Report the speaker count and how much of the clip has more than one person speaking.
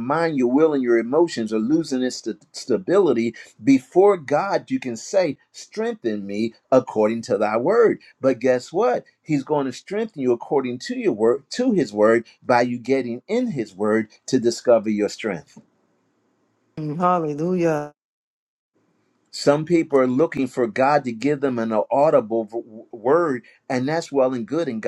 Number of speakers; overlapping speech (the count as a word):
two, no overlap